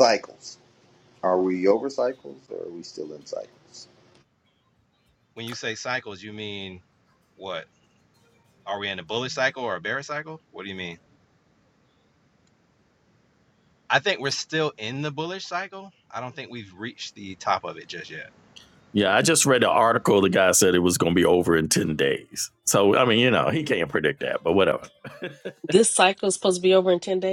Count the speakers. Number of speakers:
4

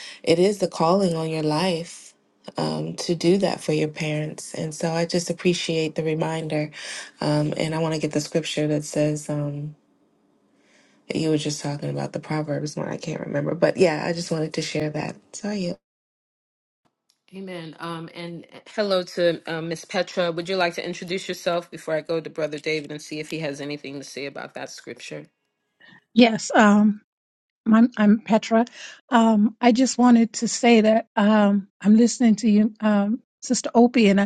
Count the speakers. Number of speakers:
3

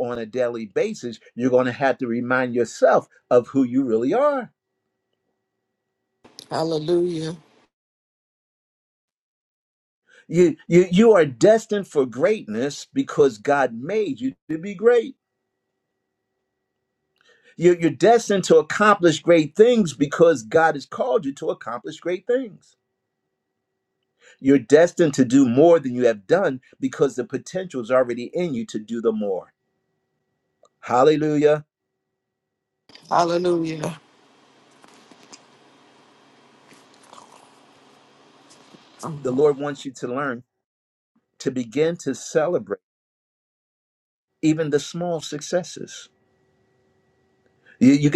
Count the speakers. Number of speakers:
2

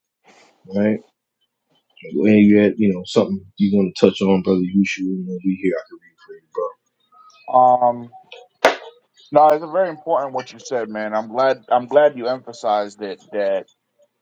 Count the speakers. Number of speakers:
2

